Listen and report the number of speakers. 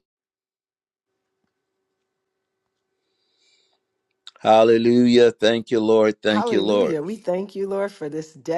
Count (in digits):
2